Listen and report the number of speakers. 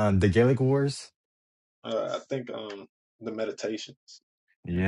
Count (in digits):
2